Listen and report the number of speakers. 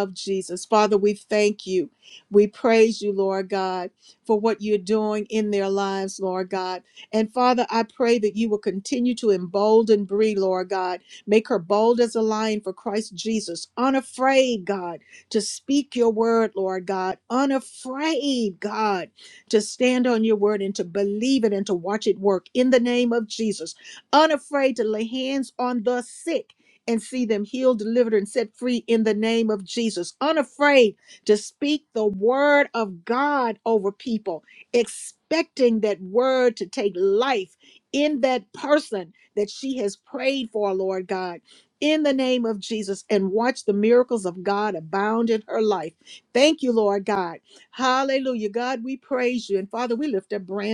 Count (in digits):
1